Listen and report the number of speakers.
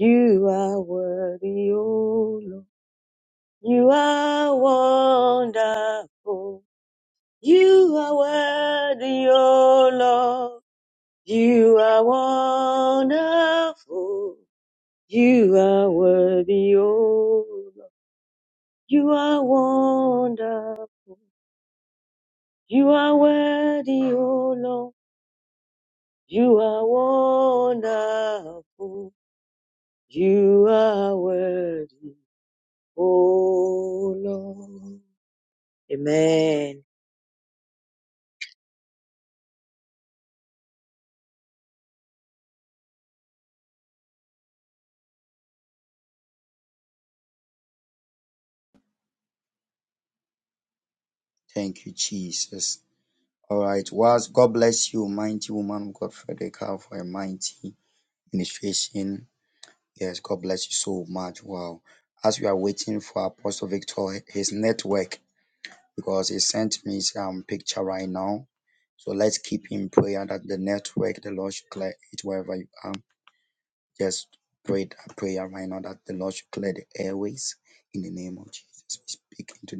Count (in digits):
2